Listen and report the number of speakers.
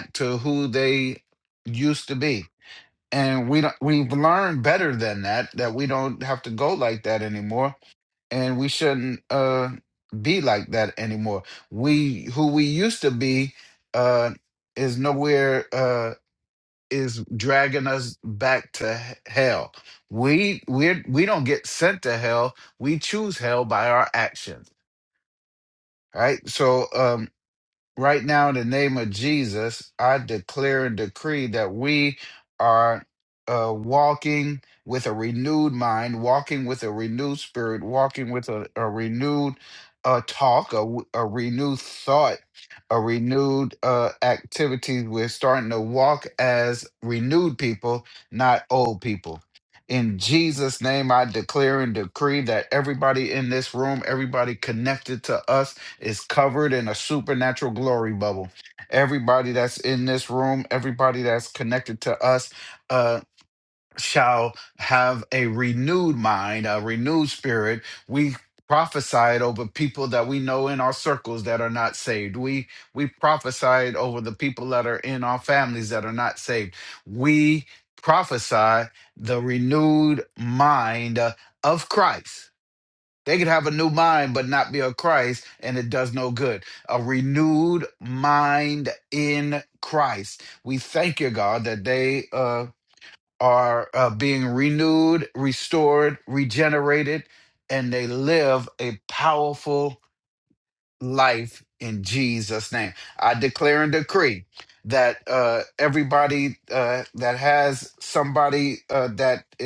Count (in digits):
1